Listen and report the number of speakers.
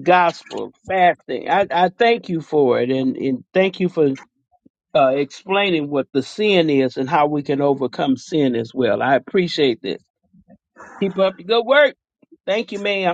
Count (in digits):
1